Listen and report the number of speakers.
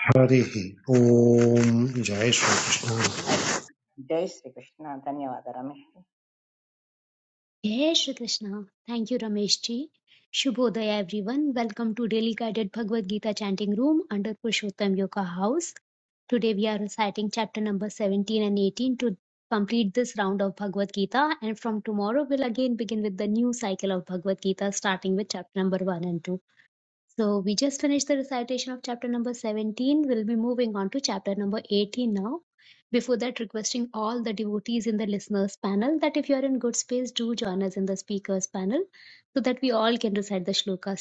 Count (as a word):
three